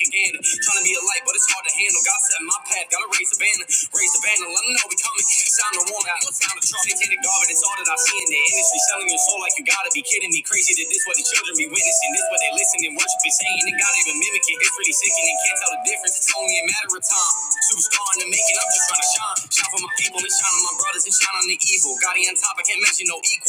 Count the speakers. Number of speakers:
1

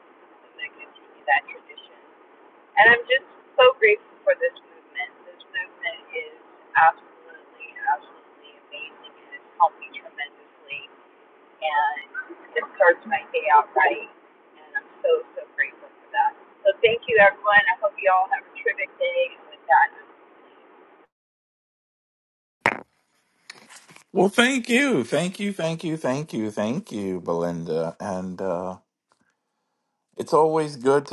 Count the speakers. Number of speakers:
2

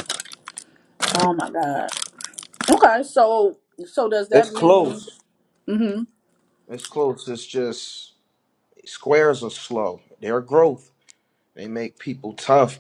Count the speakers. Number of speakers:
2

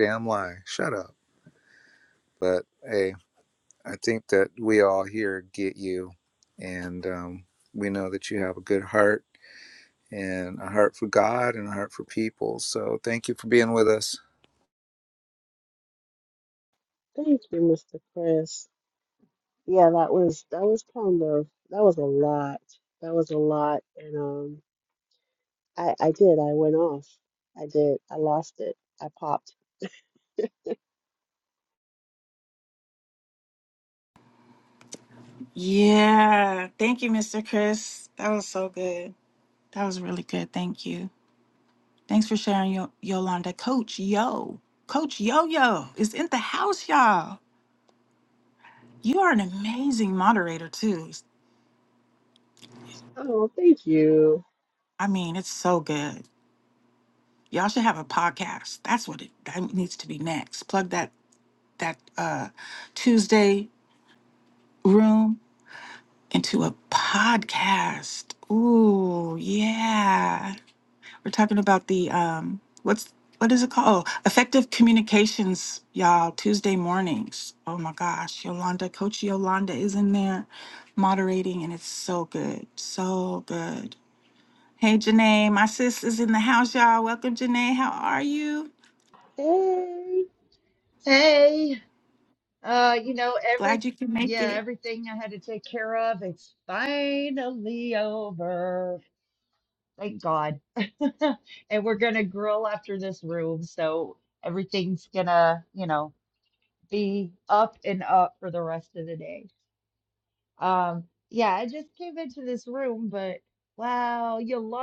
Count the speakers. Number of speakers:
4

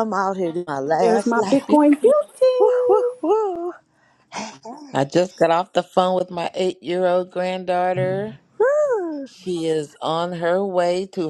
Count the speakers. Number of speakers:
3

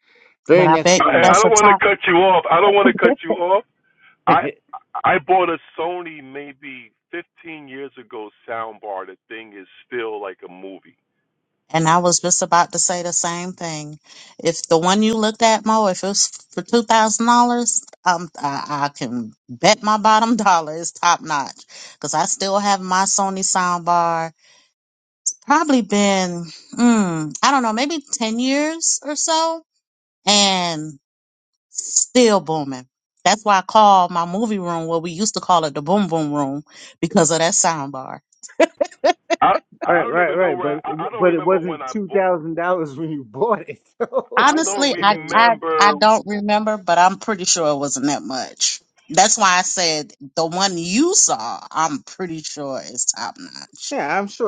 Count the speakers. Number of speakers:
3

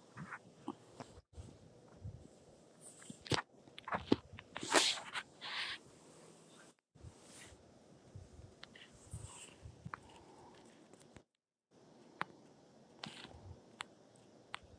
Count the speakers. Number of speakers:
0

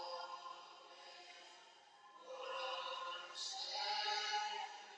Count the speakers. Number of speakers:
0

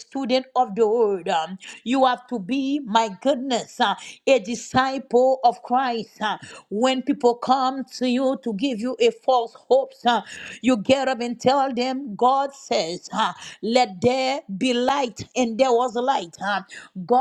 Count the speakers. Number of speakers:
1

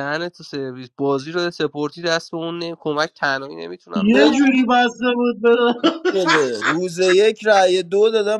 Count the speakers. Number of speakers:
3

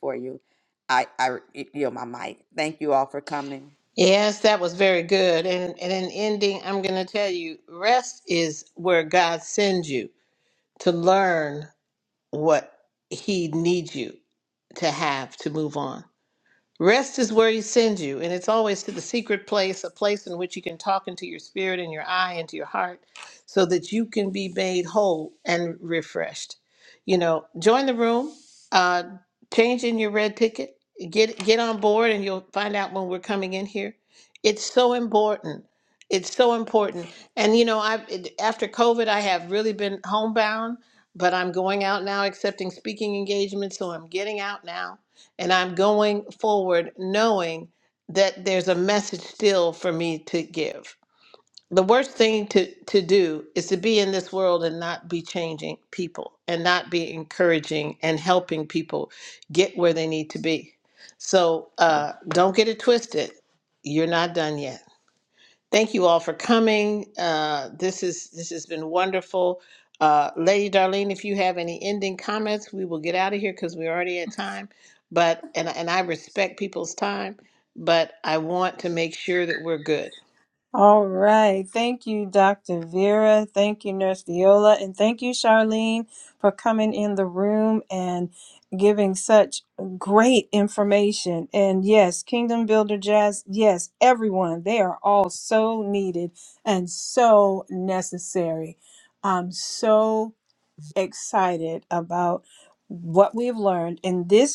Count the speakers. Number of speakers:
3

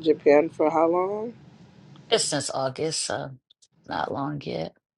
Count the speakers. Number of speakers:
2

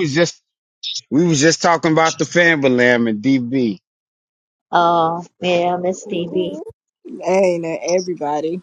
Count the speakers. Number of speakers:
3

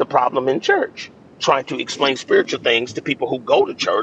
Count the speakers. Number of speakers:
1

